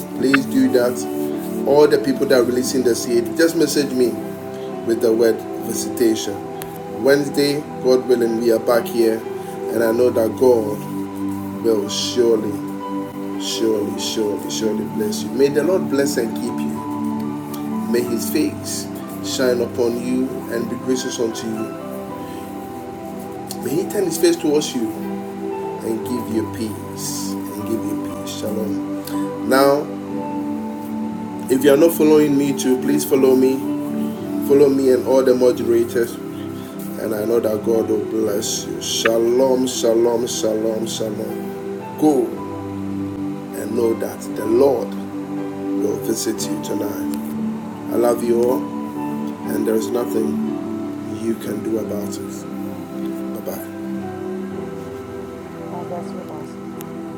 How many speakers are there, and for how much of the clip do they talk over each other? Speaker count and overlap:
2, no overlap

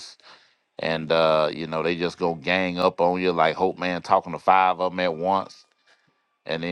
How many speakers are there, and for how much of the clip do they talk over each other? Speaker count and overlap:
1, no overlap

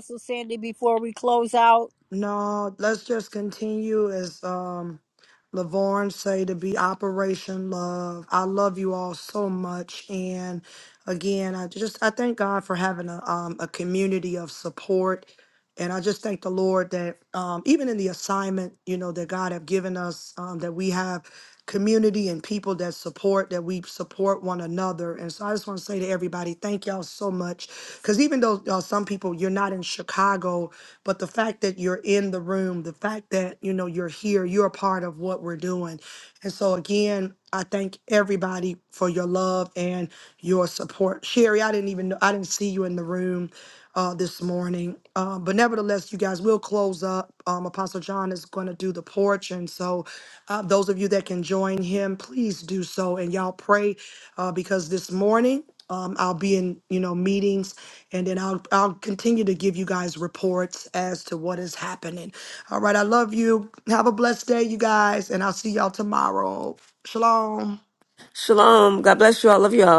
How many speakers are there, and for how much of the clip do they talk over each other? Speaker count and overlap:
3, no overlap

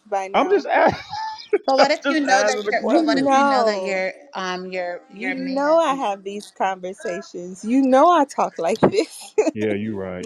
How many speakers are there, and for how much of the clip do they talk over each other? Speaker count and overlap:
3, about 32%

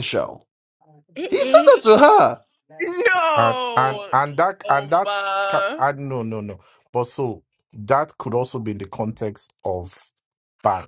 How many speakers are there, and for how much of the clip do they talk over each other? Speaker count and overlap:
3, about 14%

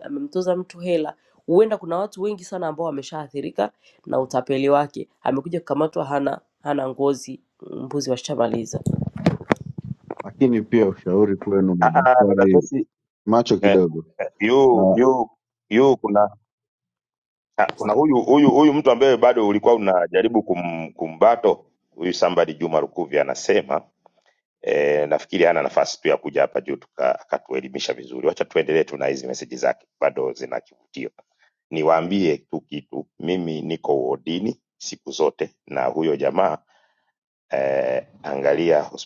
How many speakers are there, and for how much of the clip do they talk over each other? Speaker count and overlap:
3, about 3%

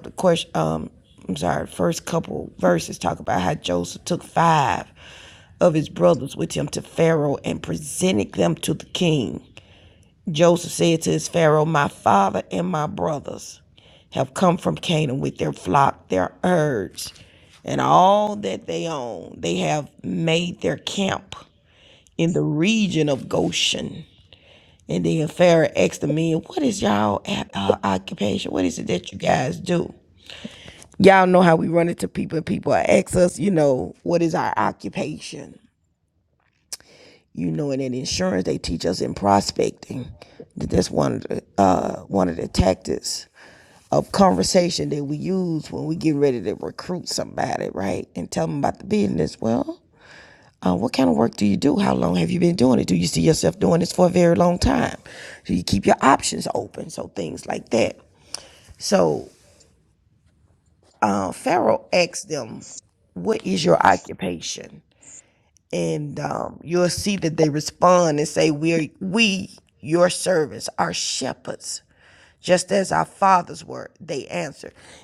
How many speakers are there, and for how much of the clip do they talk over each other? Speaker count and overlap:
1, no overlap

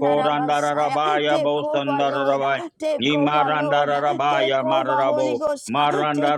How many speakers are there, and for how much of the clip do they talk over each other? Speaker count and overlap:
2, about 68%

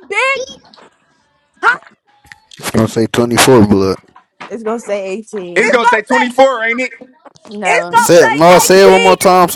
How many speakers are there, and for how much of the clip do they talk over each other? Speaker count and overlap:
4, about 27%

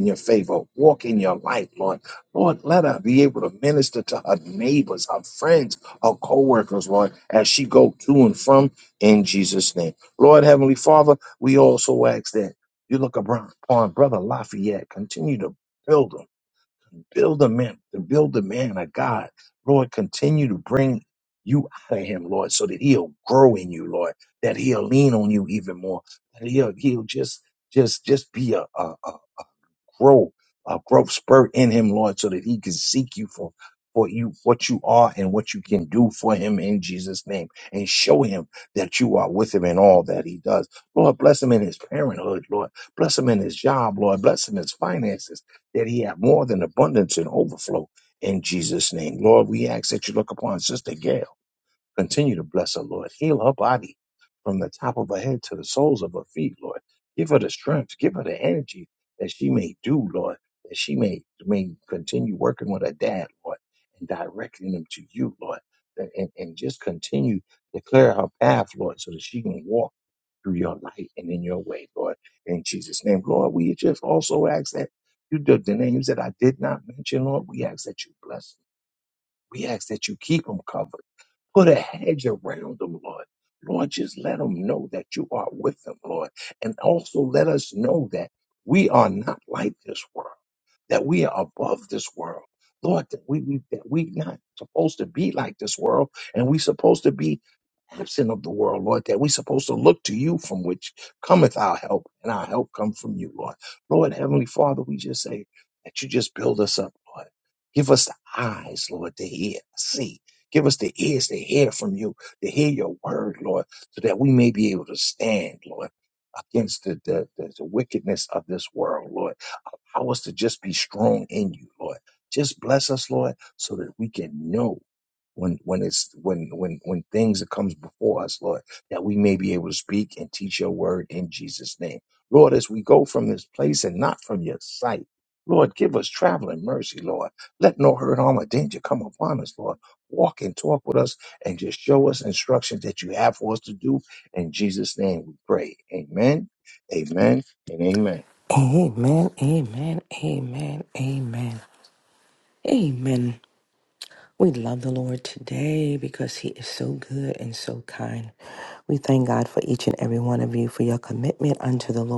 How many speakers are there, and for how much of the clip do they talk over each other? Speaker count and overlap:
2, no overlap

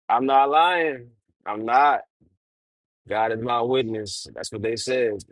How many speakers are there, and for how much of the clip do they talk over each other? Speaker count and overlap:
1, no overlap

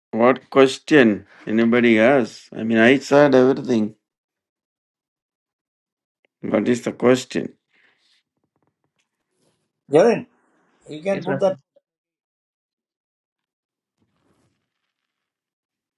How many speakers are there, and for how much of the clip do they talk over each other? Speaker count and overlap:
2, no overlap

